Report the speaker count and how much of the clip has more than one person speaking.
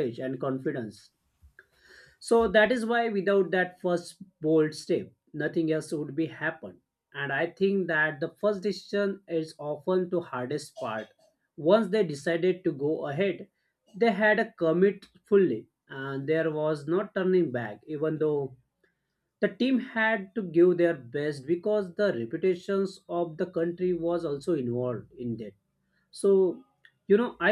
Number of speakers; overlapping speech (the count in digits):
1, no overlap